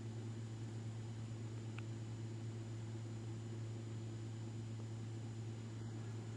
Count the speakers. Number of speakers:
0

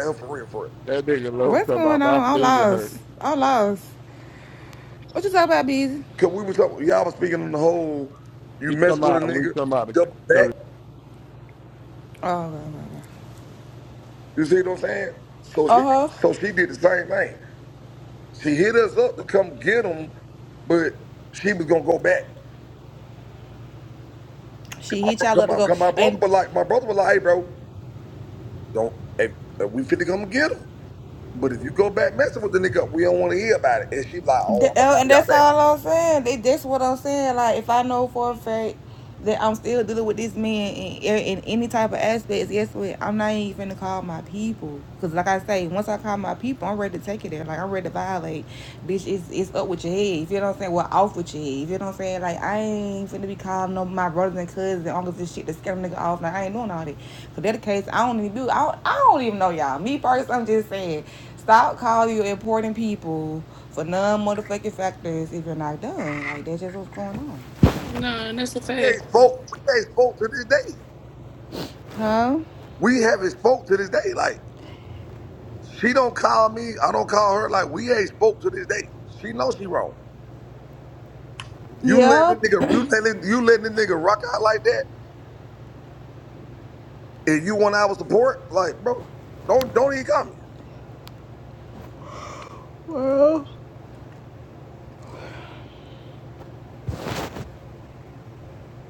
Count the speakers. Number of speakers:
4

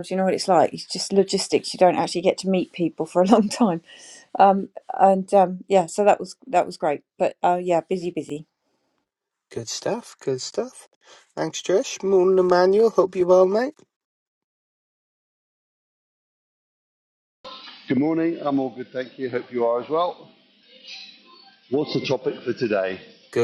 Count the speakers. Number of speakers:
3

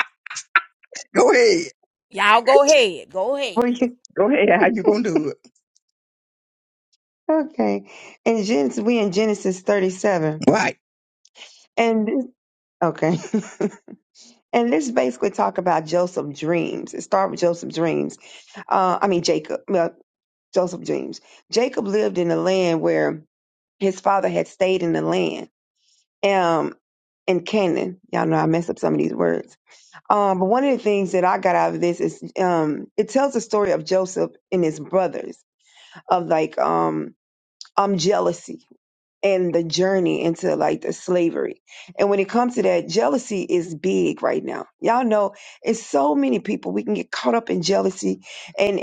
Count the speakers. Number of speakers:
3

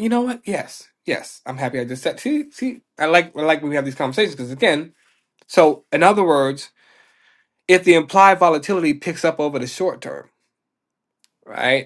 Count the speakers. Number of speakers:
1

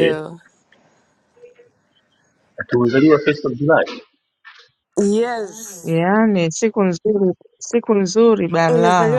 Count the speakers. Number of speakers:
3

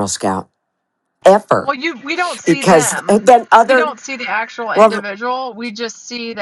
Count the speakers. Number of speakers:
2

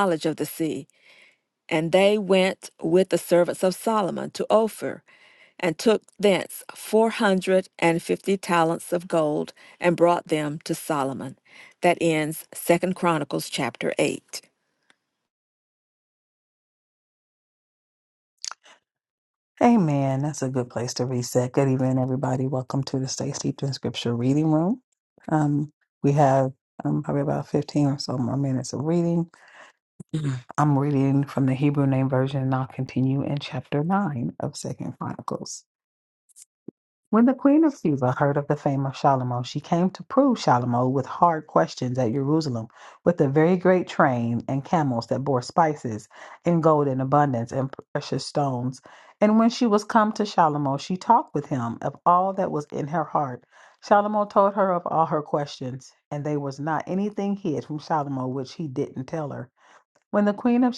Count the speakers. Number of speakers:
2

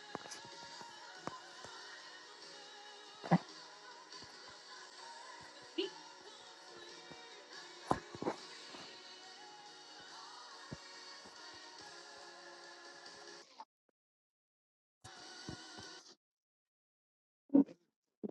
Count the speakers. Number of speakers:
0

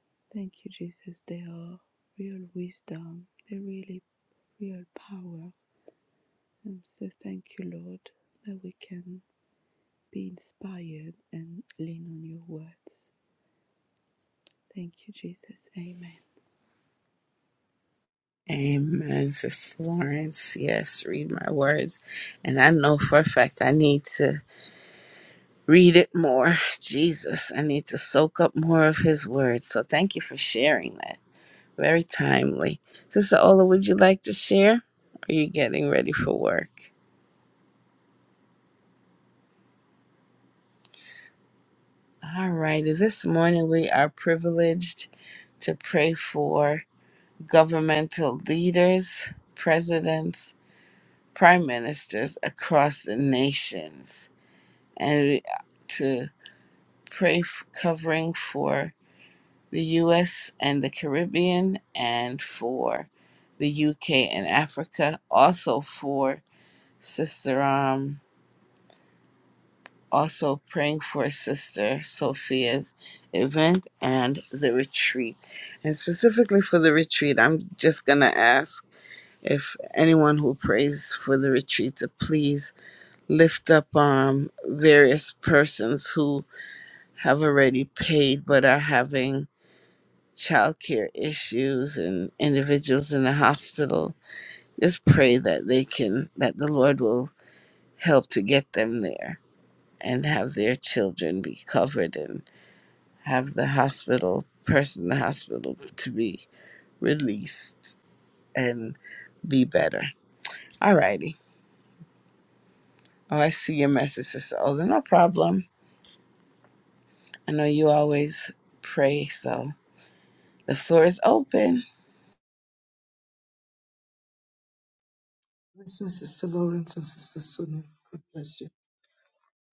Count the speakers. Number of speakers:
3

